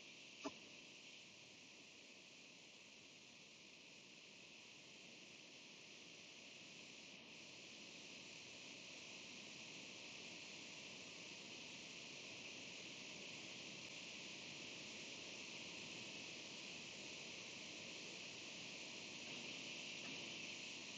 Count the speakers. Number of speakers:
0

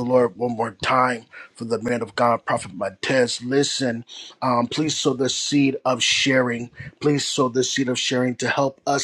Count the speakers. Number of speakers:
1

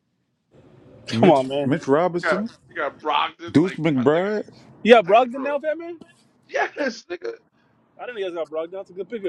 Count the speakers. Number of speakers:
3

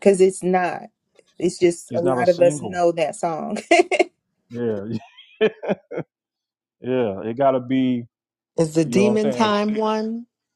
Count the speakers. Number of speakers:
3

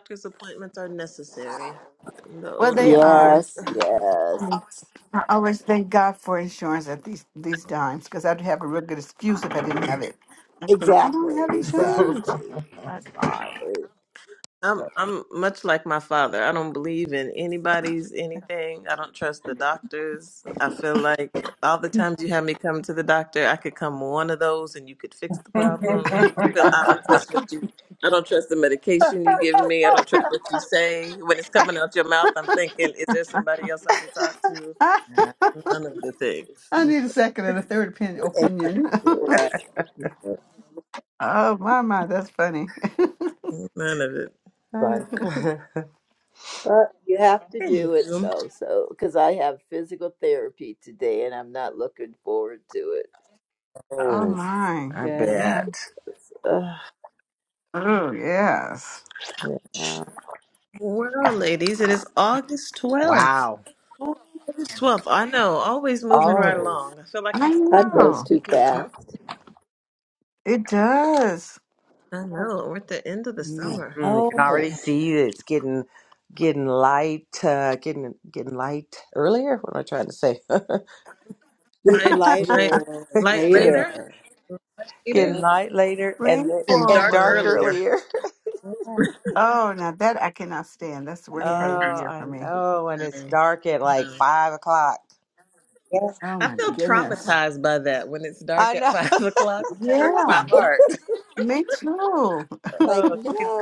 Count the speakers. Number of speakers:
4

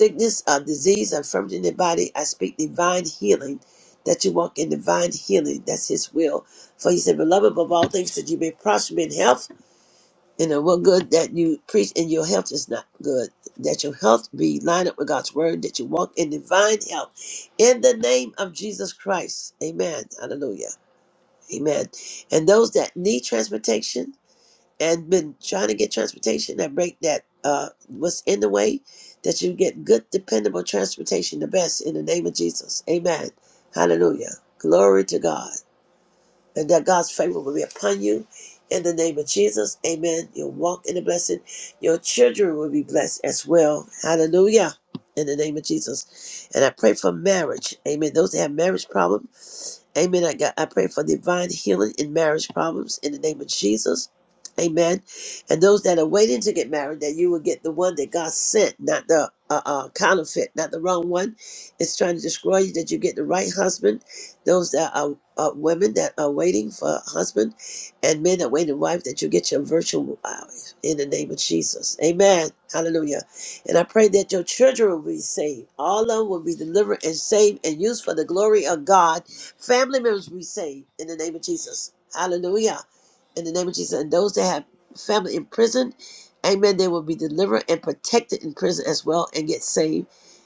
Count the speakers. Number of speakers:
1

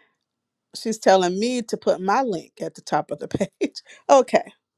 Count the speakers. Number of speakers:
1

